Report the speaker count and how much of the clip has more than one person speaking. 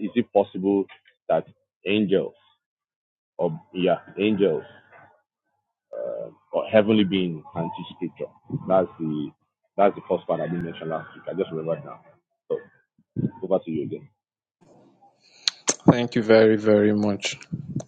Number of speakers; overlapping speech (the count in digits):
2, no overlap